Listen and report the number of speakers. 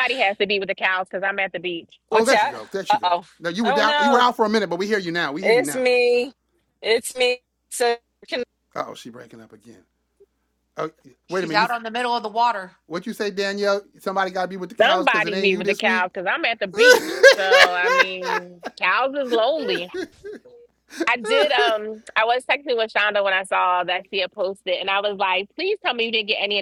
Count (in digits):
4